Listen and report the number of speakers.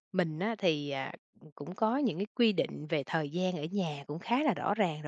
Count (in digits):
1